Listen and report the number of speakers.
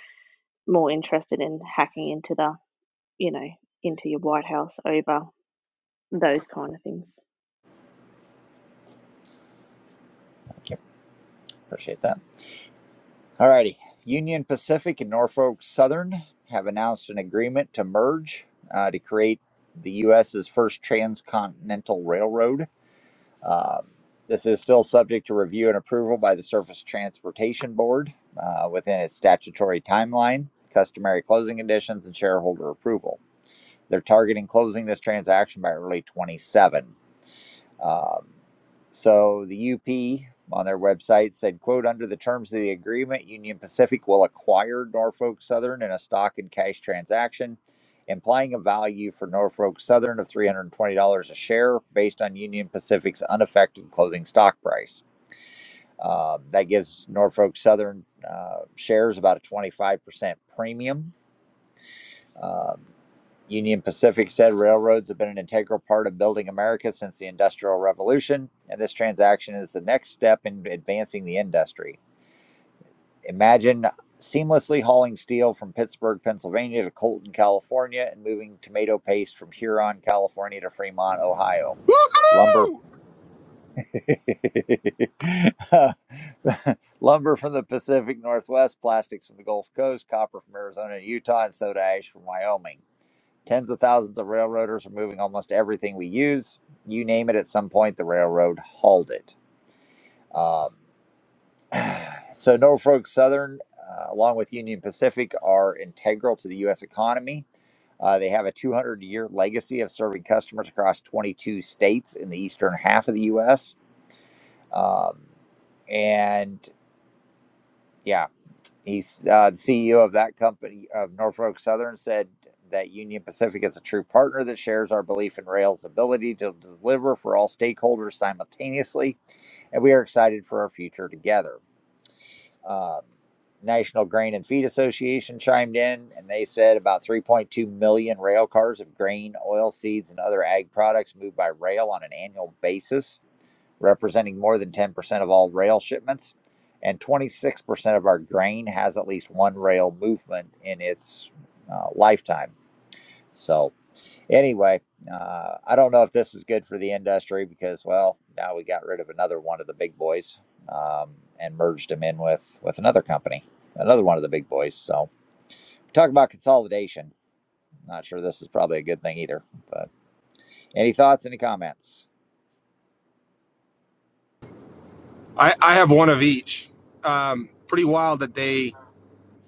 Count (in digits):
3